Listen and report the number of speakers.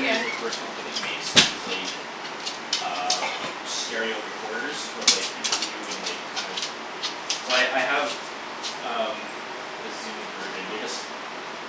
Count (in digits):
1